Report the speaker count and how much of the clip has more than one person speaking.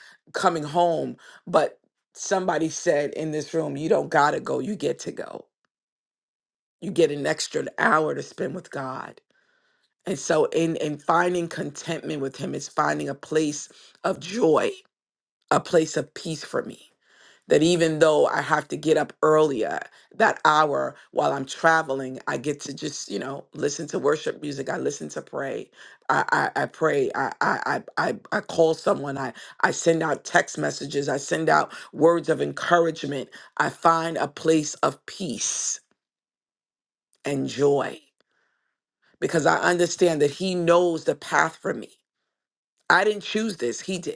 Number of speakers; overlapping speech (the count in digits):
1, no overlap